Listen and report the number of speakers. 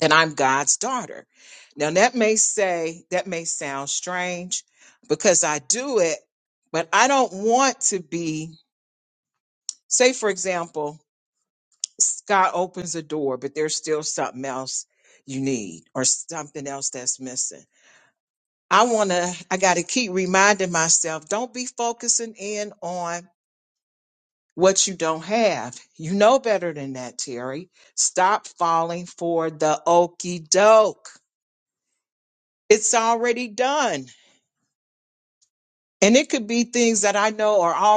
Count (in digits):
1